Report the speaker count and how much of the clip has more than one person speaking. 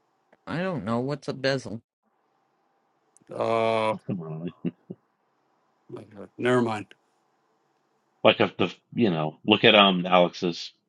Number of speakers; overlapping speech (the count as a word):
three, no overlap